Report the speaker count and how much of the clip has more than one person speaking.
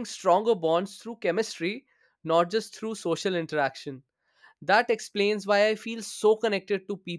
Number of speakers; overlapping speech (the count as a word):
one, no overlap